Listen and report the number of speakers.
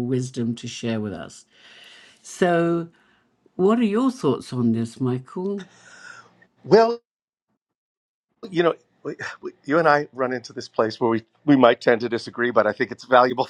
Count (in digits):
2